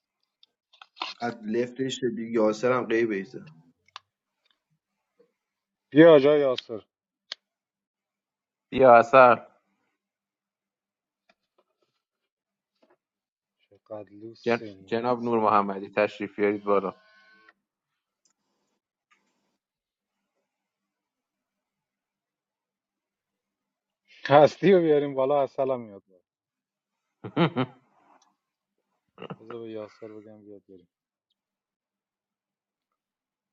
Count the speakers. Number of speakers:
three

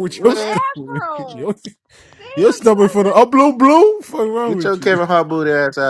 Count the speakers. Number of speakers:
three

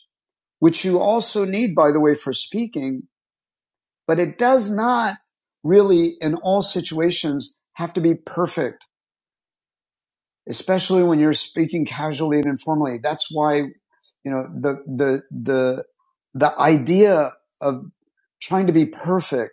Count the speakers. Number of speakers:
one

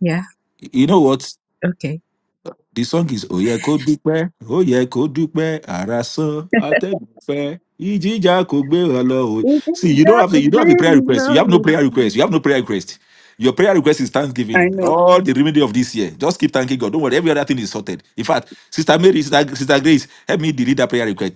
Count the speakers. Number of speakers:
two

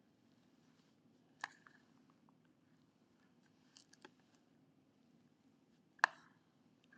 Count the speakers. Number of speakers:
zero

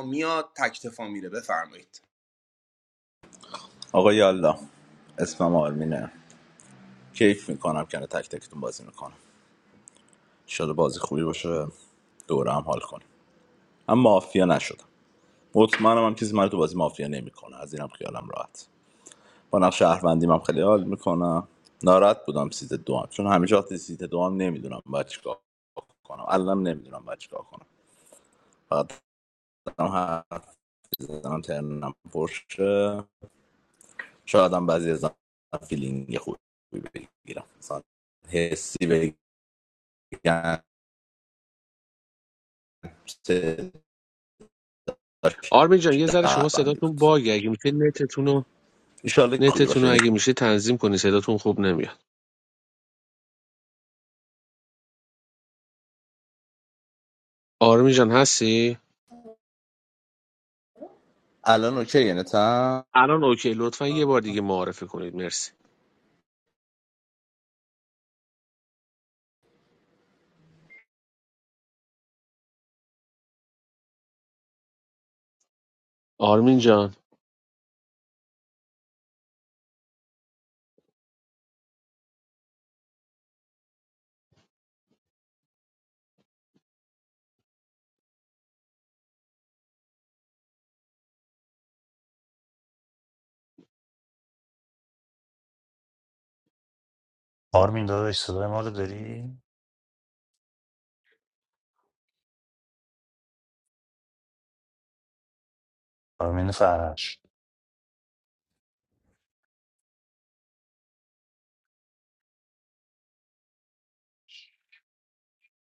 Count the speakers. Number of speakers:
four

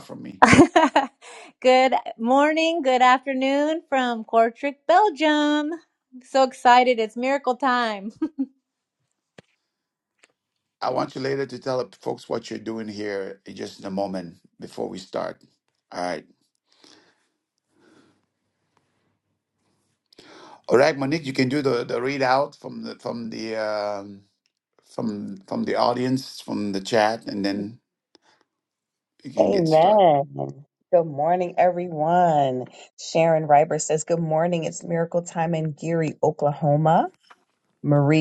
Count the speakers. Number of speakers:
three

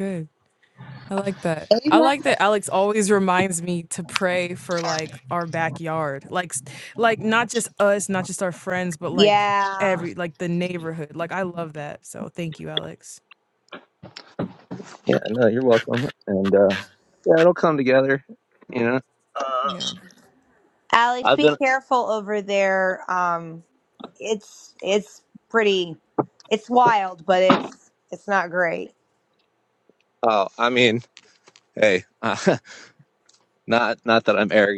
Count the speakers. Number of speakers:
three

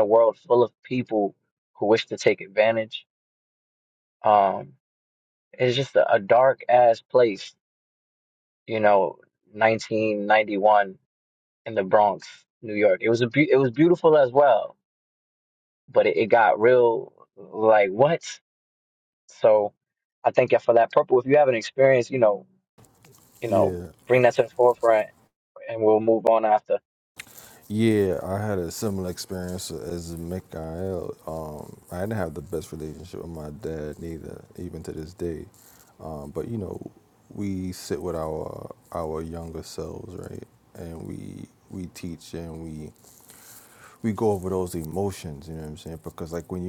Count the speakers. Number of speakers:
two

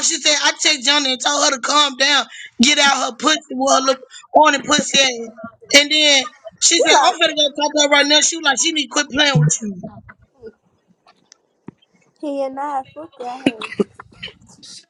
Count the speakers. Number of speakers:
two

